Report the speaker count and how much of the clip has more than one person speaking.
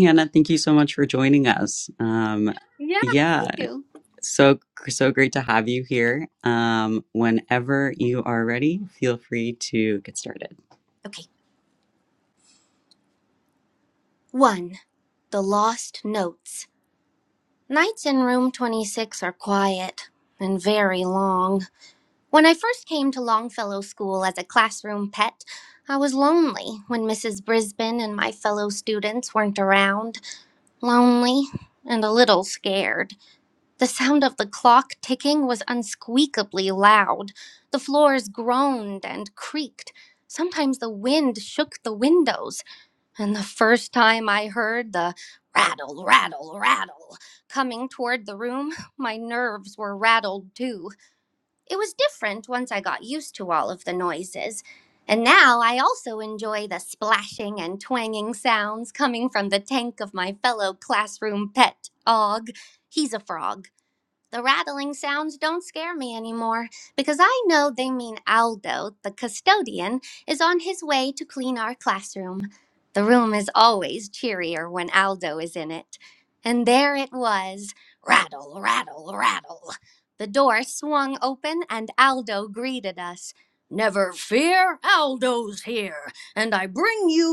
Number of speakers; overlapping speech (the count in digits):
2, under 1%